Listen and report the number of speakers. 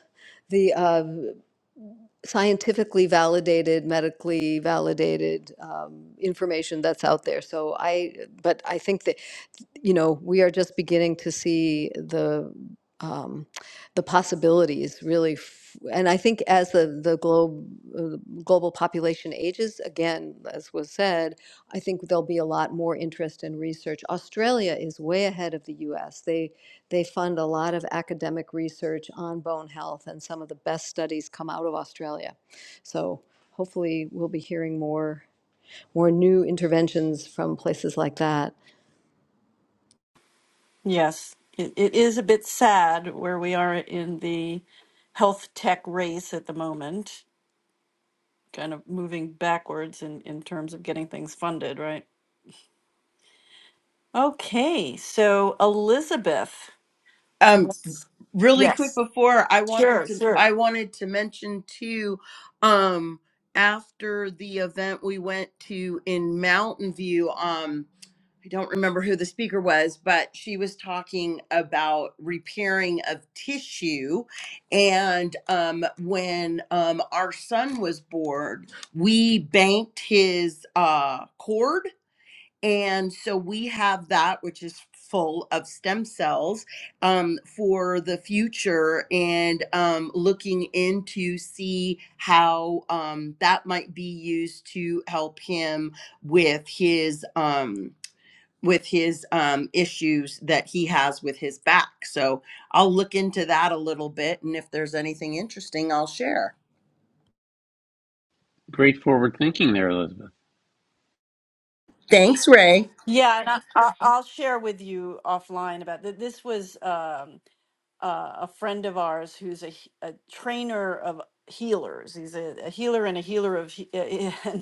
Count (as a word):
four